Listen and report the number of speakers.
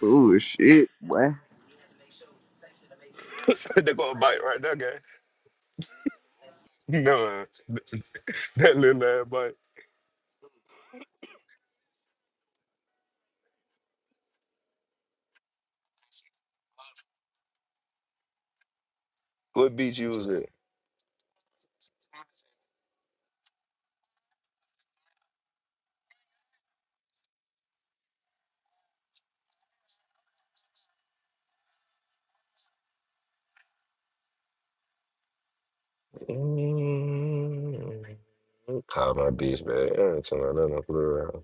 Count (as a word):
two